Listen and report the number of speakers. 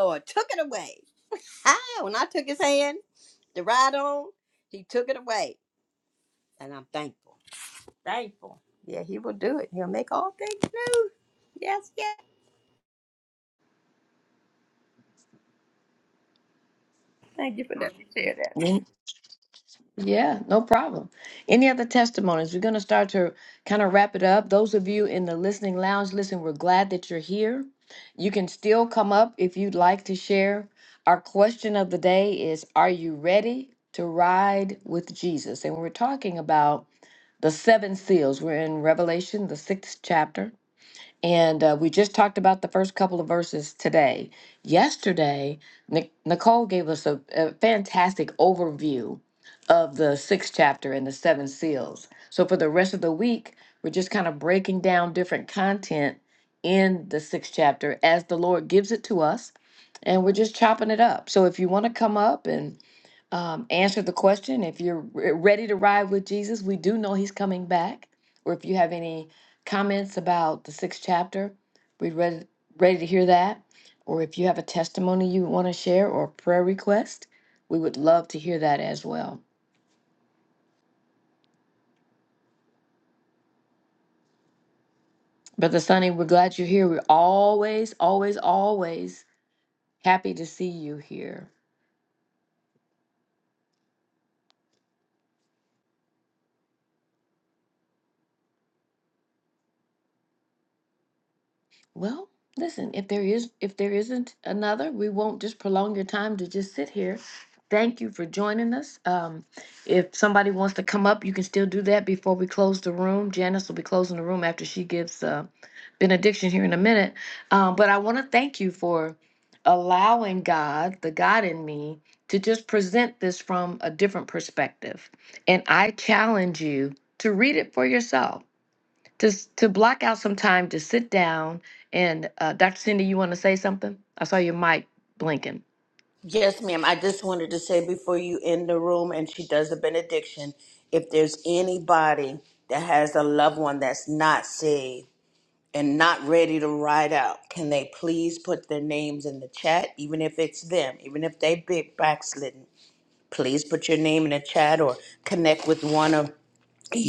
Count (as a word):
three